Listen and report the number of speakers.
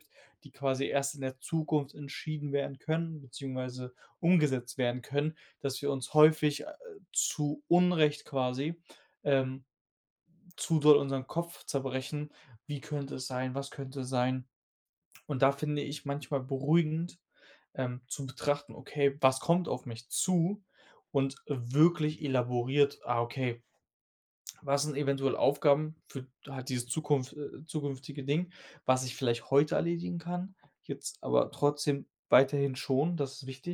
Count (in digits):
1